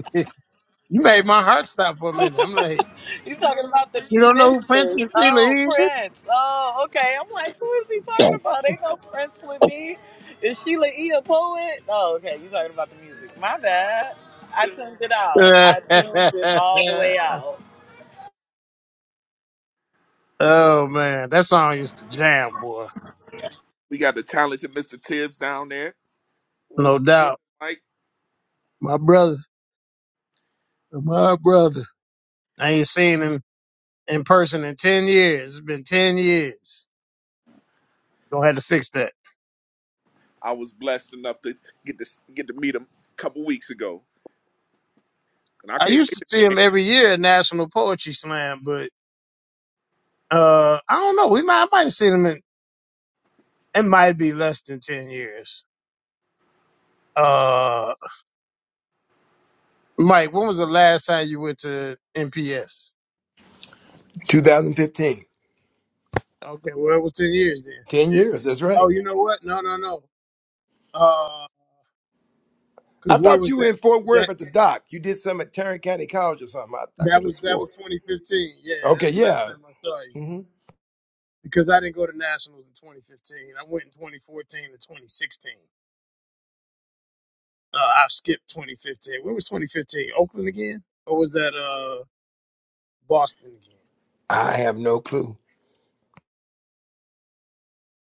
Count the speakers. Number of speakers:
four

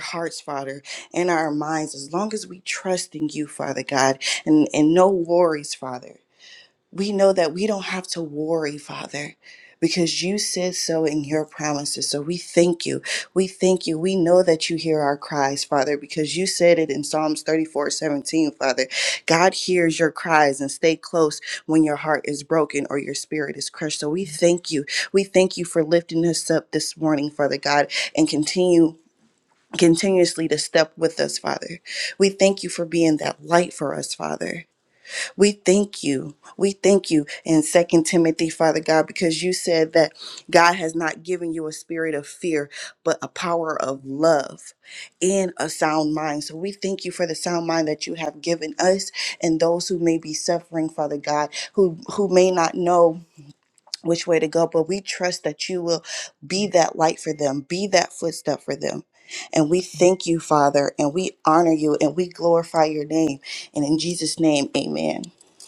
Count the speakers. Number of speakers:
one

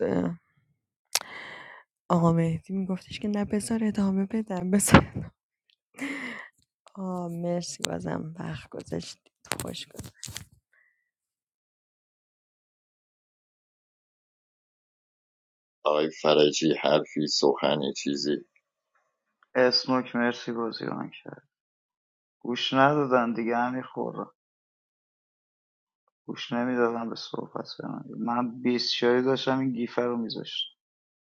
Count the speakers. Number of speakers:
three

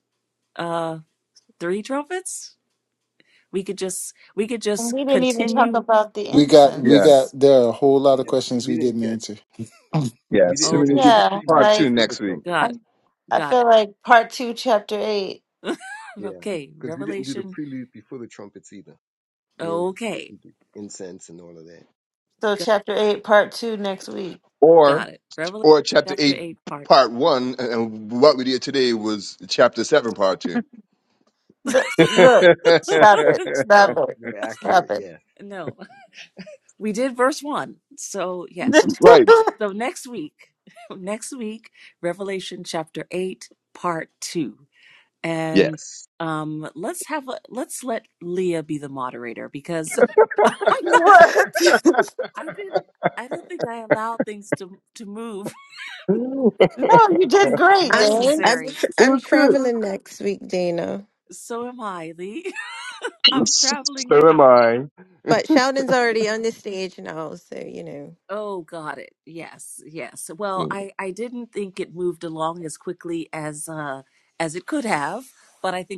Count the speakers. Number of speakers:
six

